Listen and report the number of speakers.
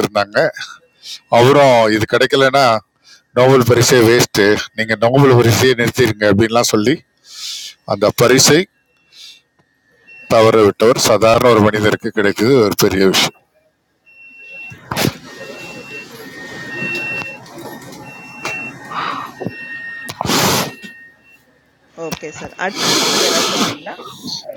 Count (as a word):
two